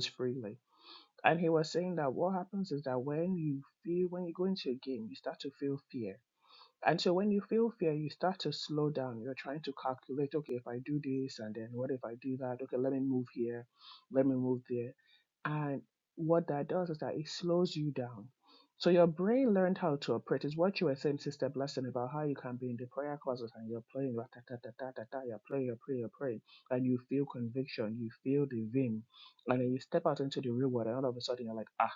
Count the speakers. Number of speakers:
one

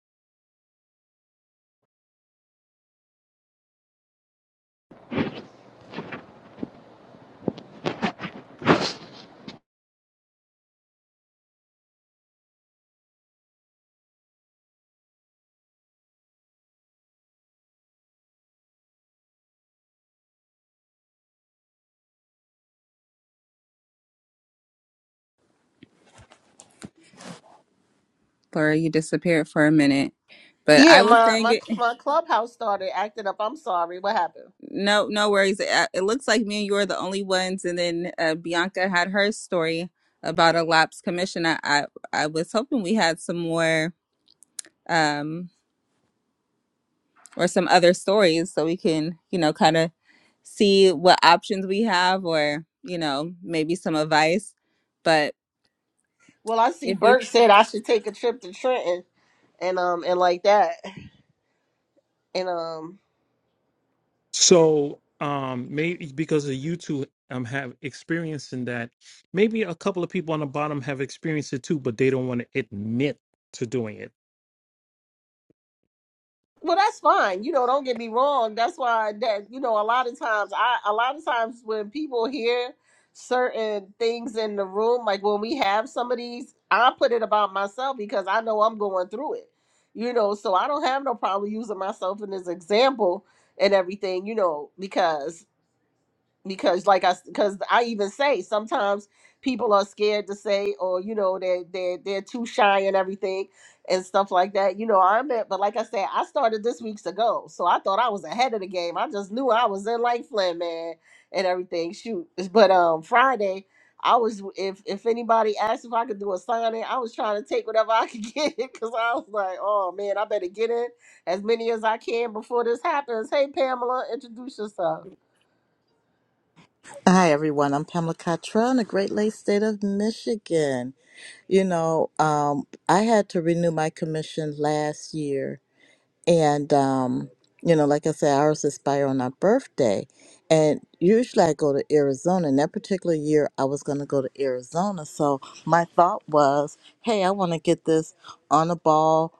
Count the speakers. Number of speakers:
four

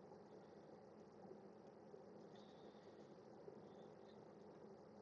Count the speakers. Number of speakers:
zero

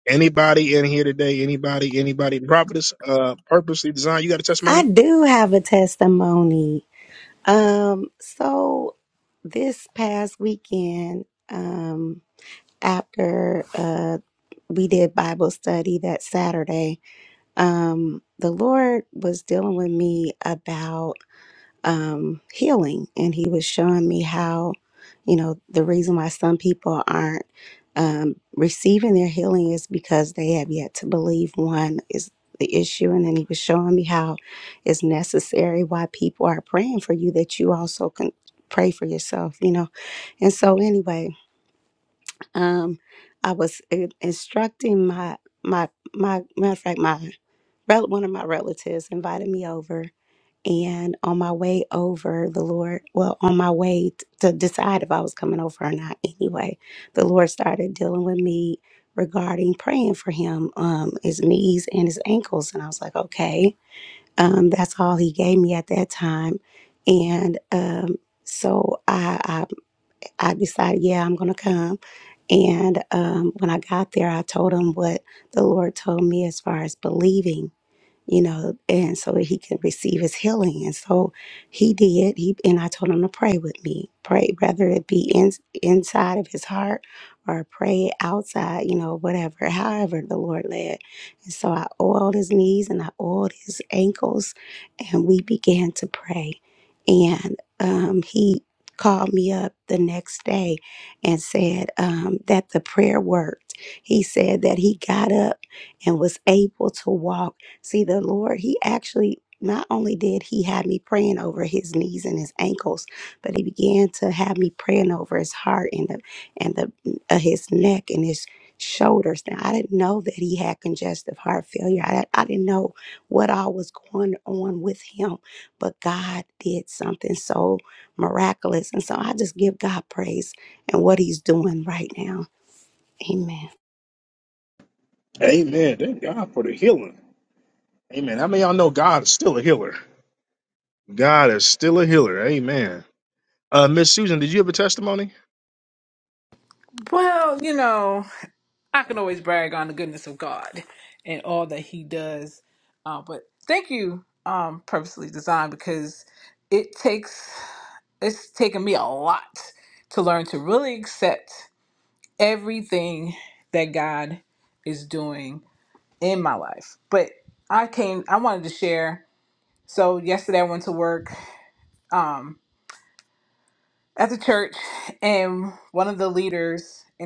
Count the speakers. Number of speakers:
three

